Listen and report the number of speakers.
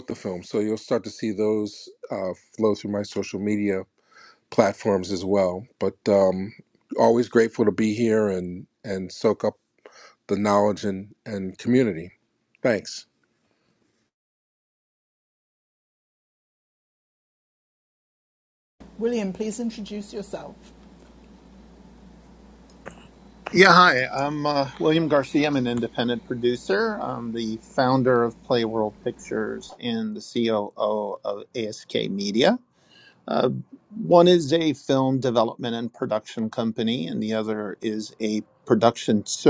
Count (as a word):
three